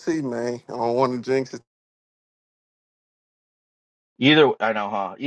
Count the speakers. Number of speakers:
2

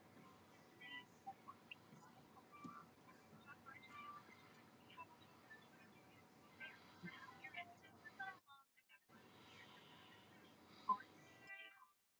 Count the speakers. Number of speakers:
0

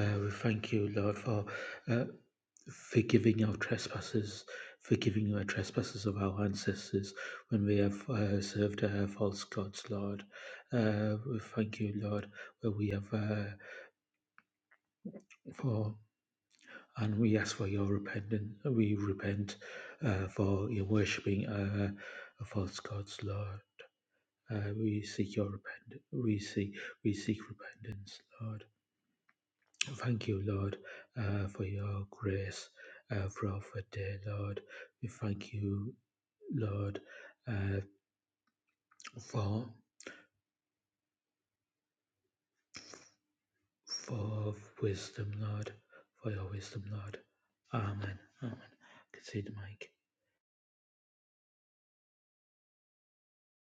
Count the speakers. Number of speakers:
1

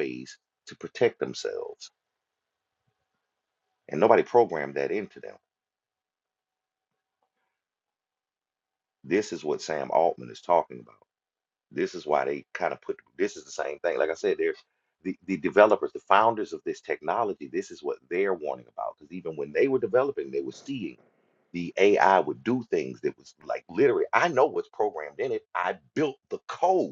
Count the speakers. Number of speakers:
1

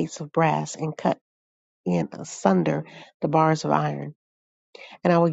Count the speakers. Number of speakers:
1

